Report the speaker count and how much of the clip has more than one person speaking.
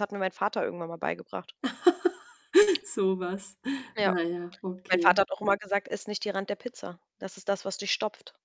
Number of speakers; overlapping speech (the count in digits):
2, about 4%